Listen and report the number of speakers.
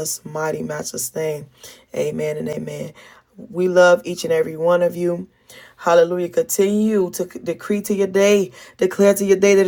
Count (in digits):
1